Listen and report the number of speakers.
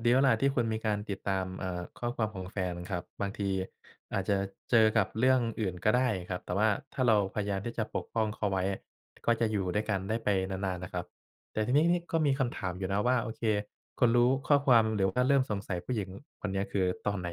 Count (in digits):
1